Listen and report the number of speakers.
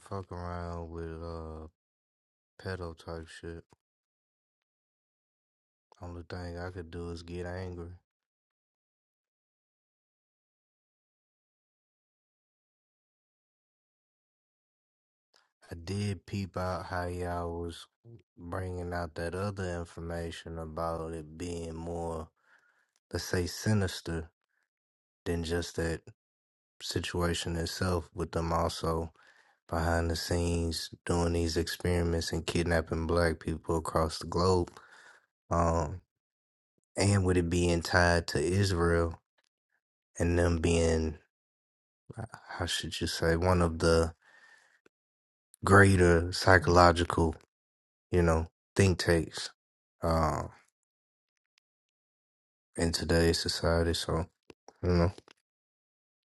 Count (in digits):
1